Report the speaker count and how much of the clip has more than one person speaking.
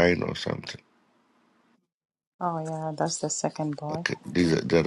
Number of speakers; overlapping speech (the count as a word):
two, about 6%